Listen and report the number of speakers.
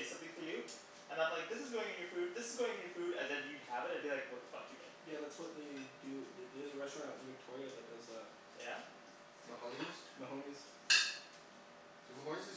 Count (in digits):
3